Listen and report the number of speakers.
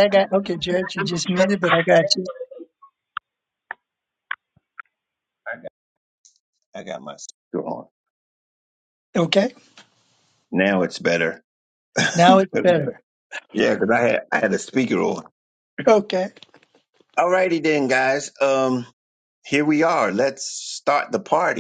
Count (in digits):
2